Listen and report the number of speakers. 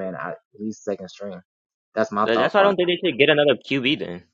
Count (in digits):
2